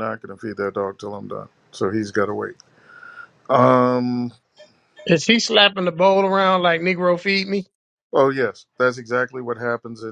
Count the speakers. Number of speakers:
2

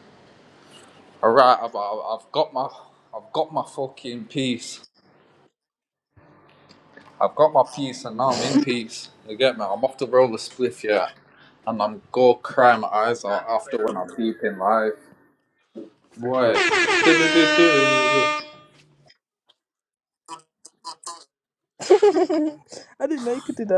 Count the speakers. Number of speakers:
2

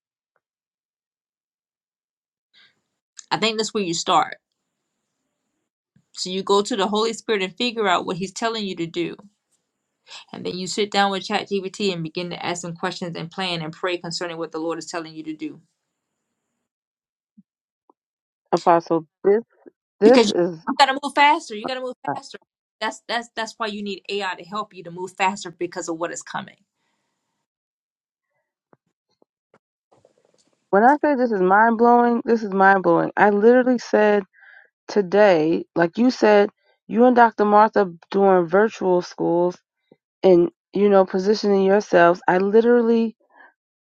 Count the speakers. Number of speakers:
2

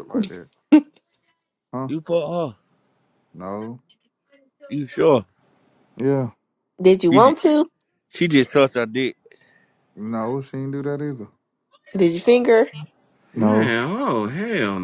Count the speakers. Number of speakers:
4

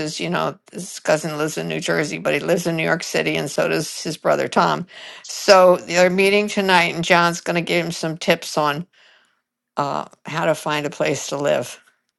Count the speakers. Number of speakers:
1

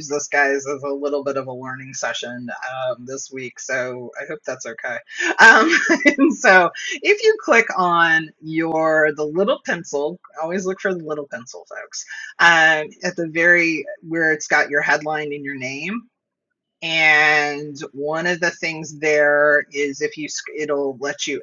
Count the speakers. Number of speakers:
1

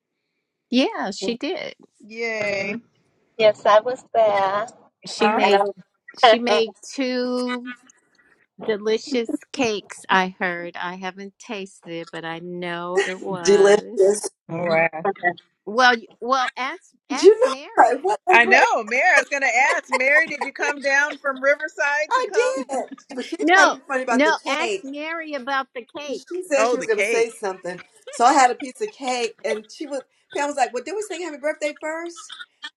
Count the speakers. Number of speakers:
4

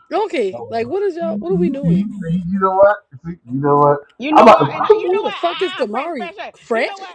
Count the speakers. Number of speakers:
3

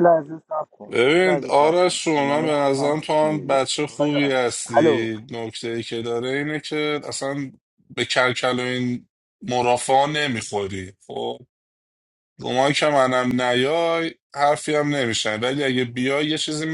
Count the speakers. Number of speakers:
2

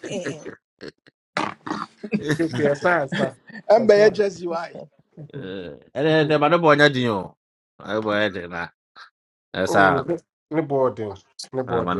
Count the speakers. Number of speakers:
3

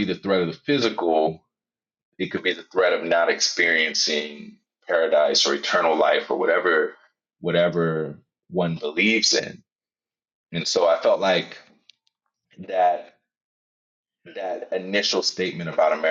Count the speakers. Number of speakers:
1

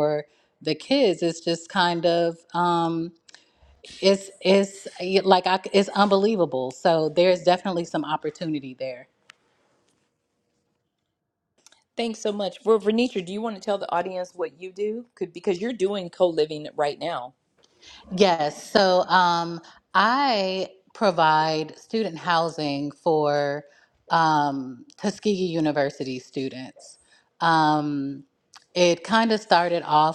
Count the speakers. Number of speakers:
2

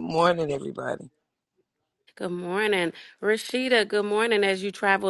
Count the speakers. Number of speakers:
2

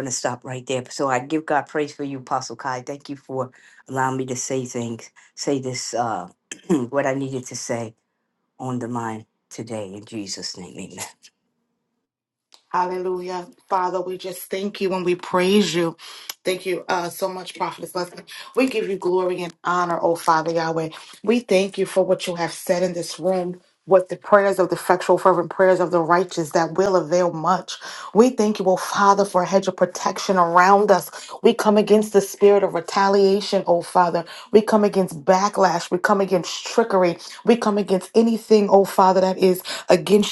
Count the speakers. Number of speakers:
2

